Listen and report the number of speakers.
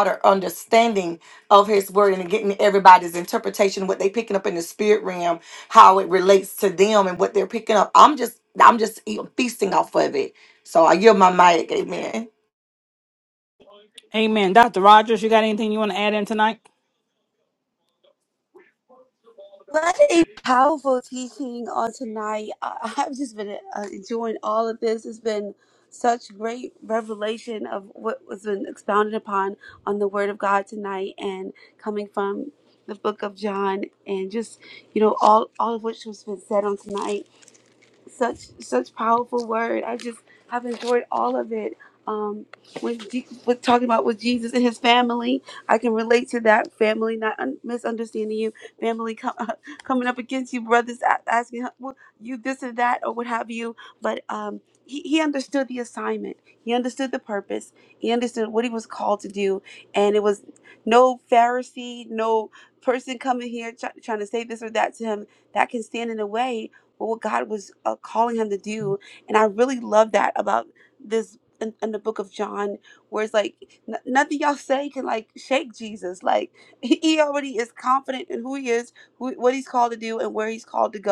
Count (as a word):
three